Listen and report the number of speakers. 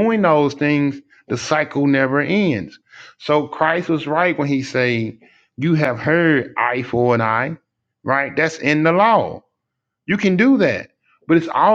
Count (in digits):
1